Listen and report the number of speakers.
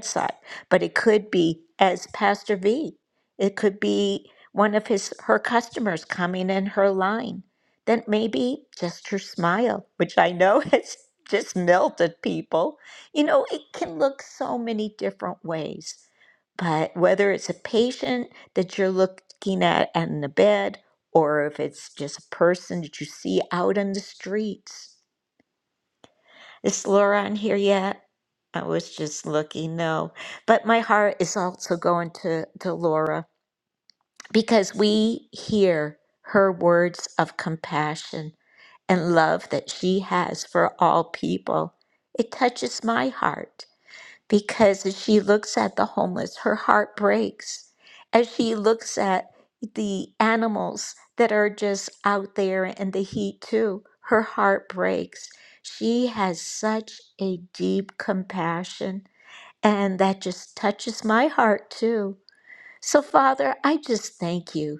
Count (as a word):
one